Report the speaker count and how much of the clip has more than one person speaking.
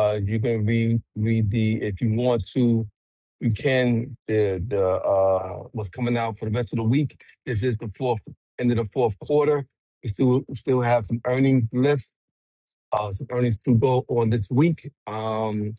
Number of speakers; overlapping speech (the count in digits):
1, no overlap